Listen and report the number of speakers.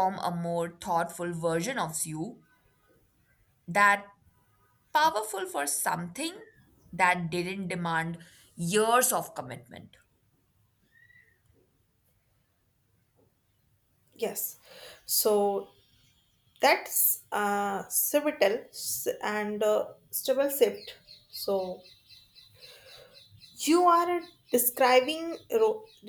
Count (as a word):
two